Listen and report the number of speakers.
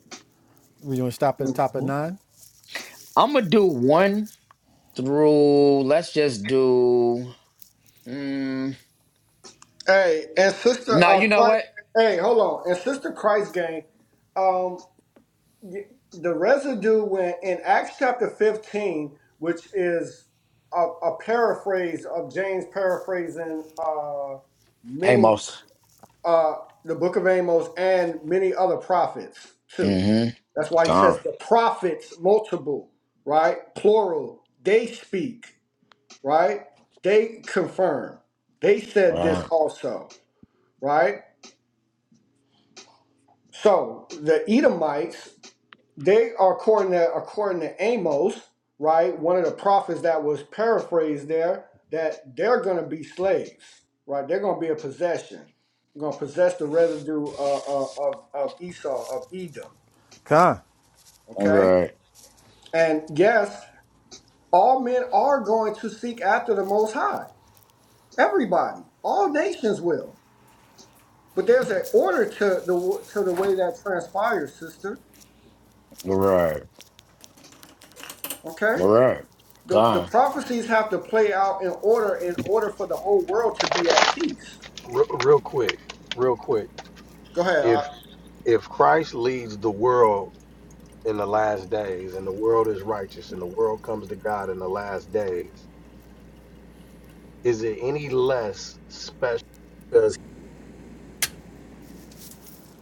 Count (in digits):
4